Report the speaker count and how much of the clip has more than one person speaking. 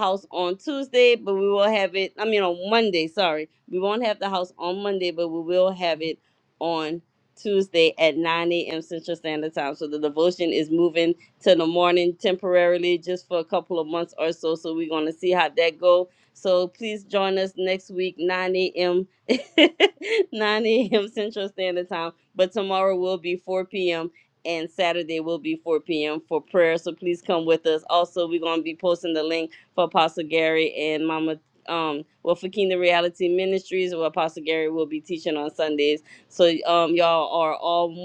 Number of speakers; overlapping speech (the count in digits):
1, no overlap